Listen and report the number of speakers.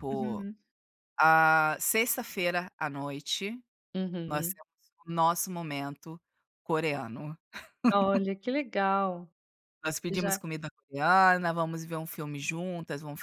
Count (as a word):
two